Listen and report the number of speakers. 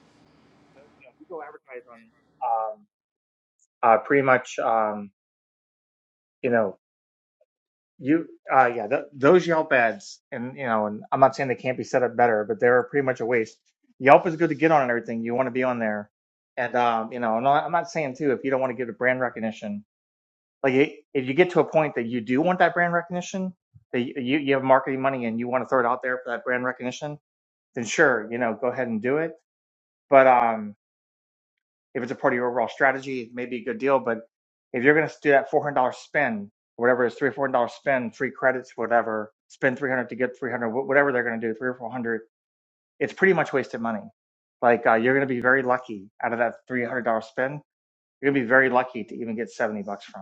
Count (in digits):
1